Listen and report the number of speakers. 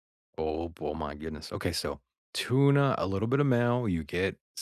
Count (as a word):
one